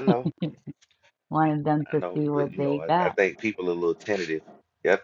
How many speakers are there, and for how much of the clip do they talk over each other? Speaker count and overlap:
2, about 26%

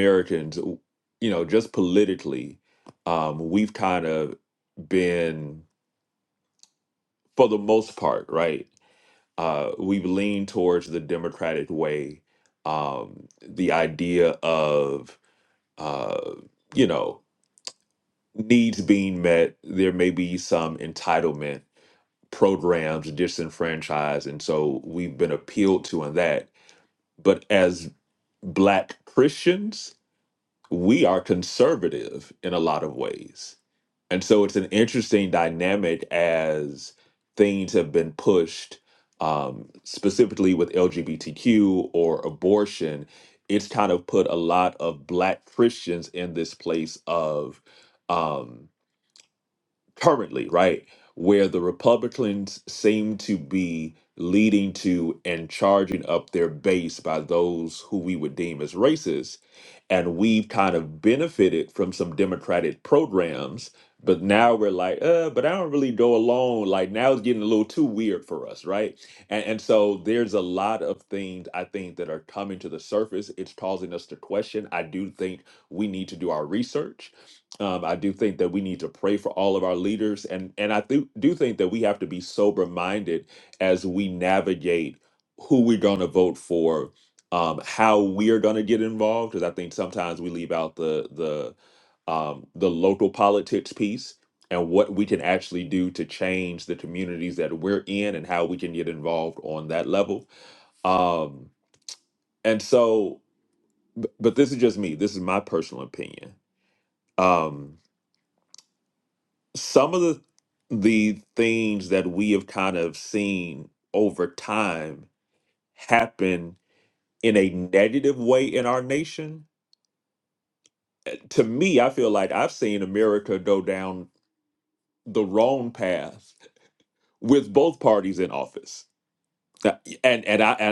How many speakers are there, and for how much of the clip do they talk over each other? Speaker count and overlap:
1, no overlap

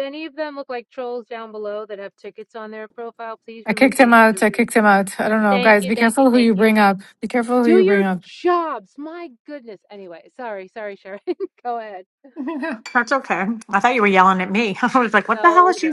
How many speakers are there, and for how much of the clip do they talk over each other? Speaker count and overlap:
3, about 21%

